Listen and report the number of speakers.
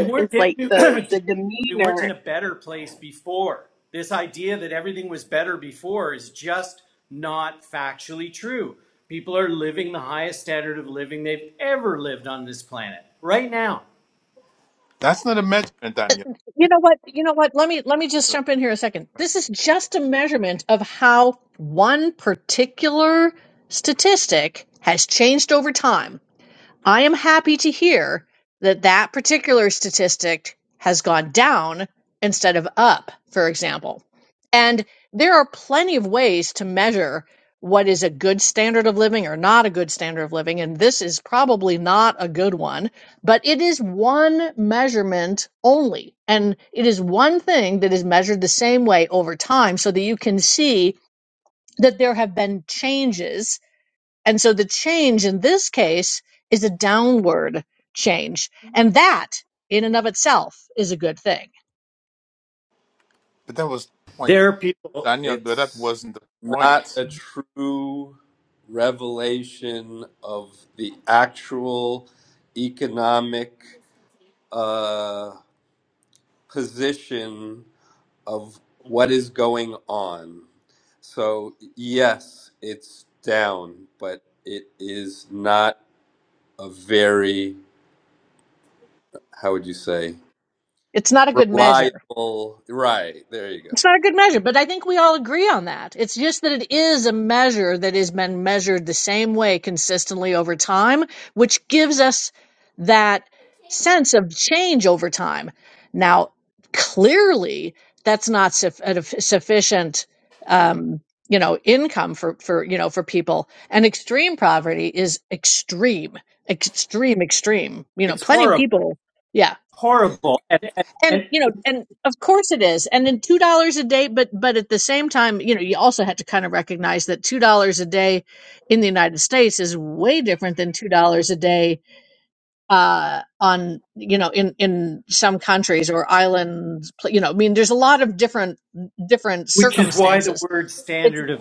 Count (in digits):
5